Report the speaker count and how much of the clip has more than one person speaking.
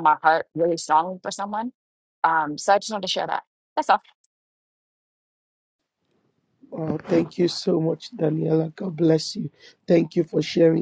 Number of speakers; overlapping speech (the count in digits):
2, no overlap